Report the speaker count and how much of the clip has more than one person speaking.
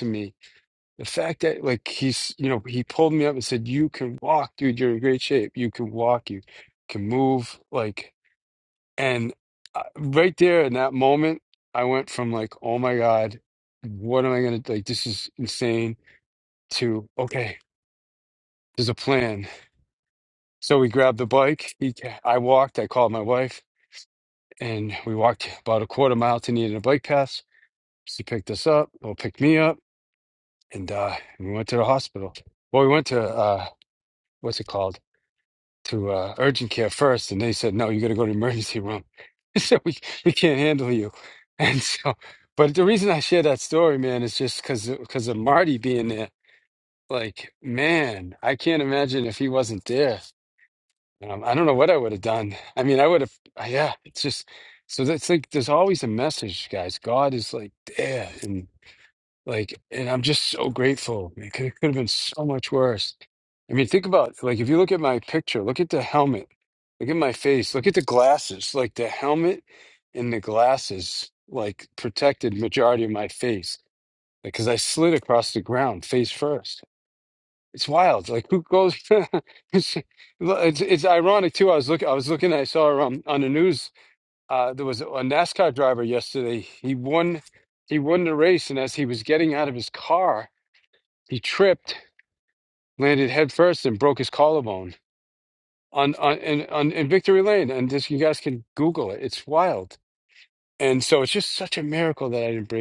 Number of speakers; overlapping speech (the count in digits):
1, no overlap